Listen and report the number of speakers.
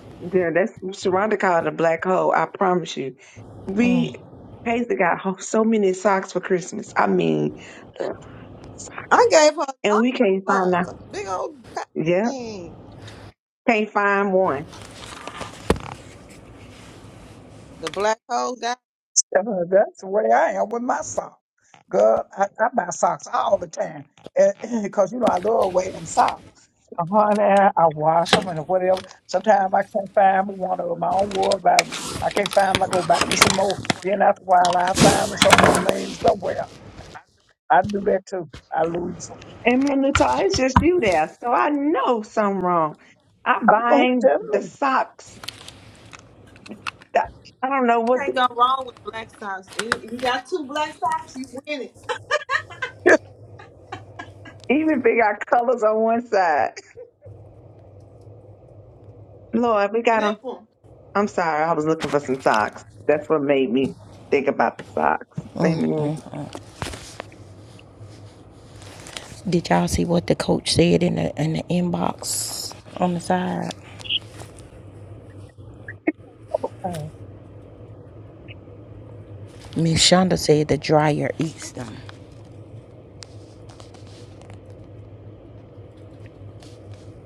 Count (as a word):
four